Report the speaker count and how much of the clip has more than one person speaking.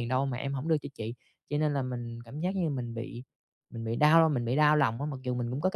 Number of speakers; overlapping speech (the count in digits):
1, no overlap